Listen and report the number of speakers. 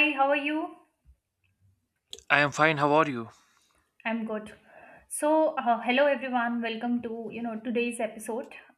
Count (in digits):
2